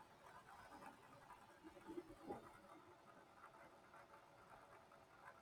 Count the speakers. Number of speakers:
zero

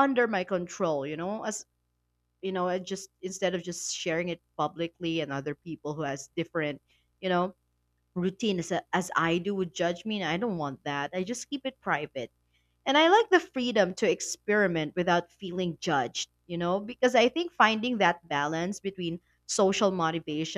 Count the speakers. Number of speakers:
one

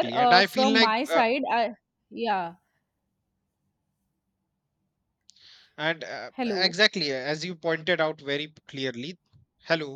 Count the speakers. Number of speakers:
two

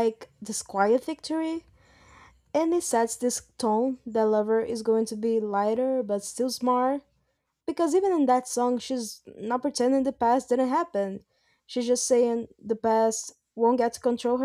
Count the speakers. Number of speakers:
one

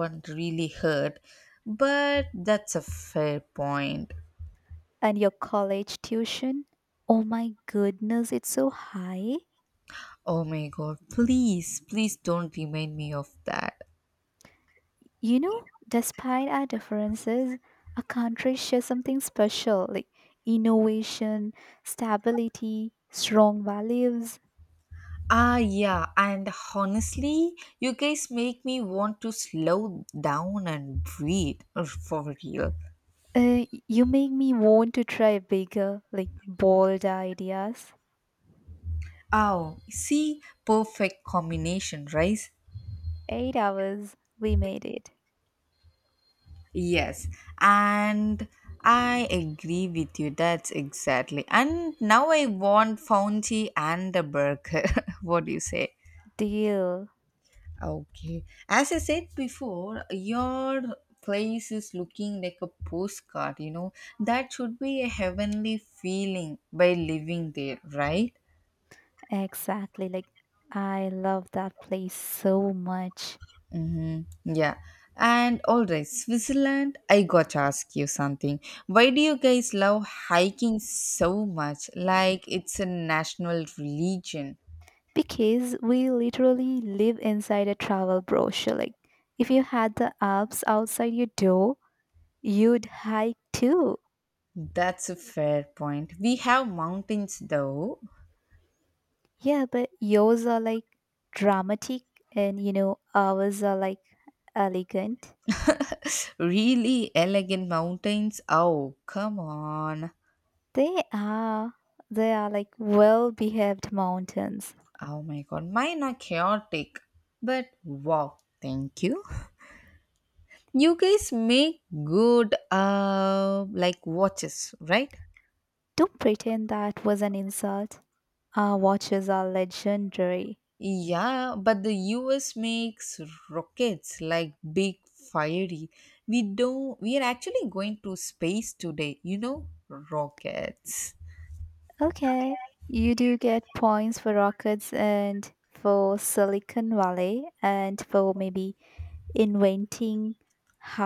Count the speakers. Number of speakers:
two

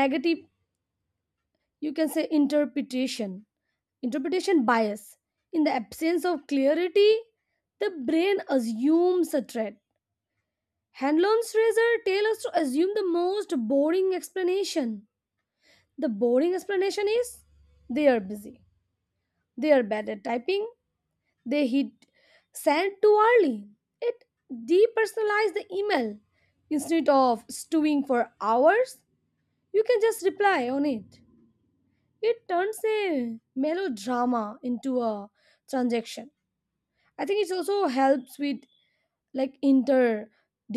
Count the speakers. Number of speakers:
one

